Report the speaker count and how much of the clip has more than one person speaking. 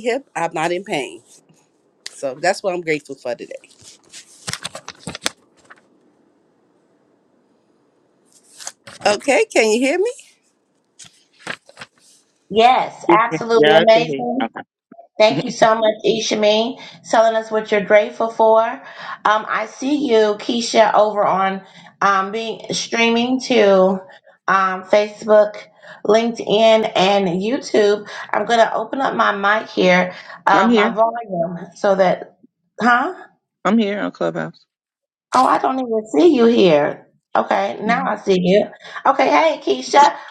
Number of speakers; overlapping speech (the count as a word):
three, about 5%